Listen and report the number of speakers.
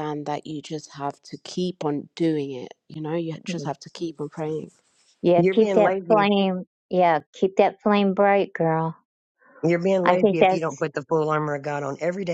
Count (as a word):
three